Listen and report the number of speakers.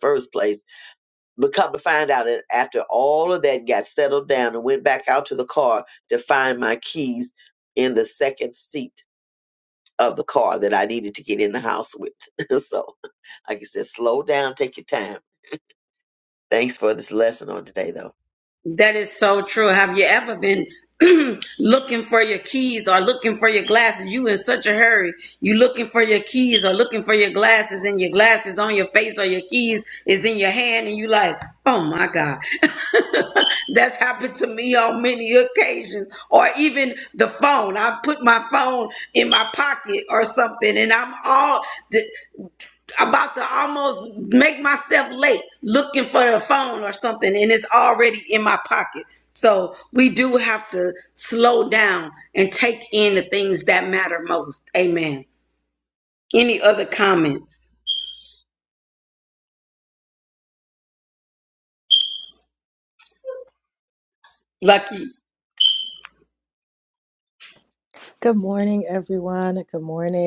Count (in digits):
3